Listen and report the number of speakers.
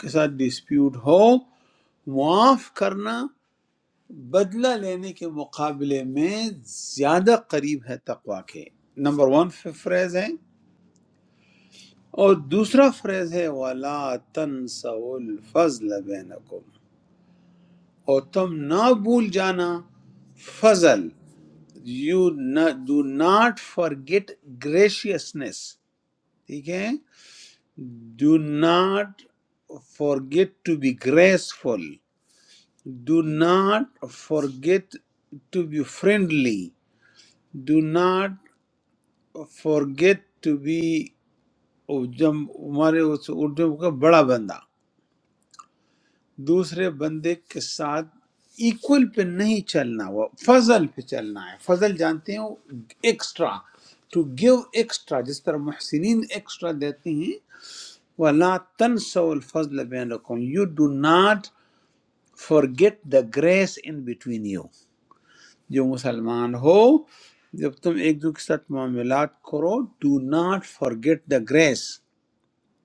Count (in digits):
1